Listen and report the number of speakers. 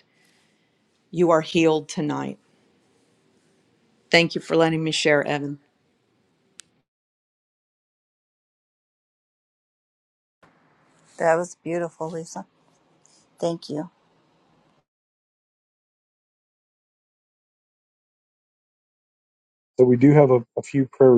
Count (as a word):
three